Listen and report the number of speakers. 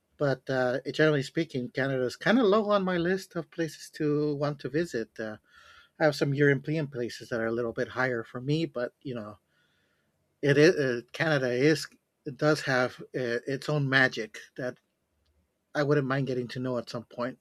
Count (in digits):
1